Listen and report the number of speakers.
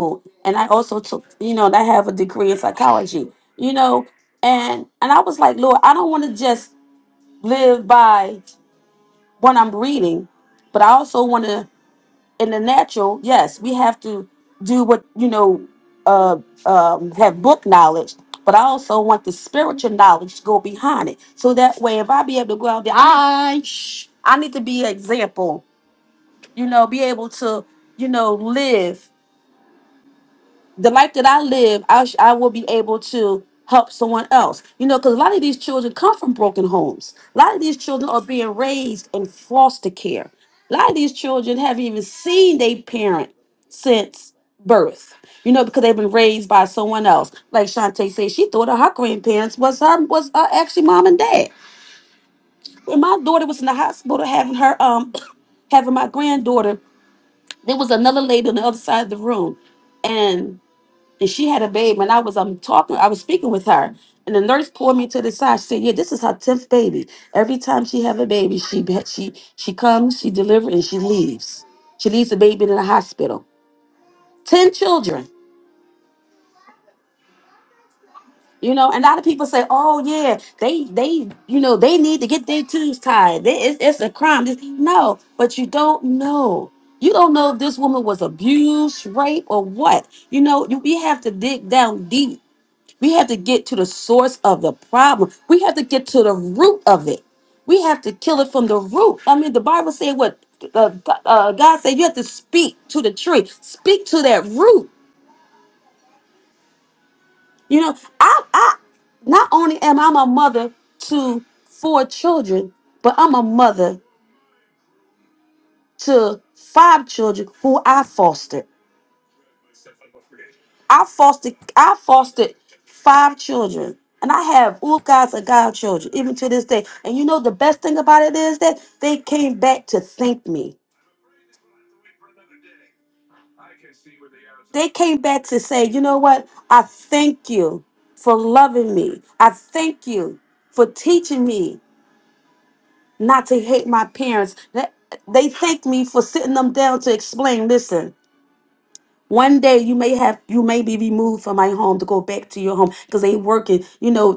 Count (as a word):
one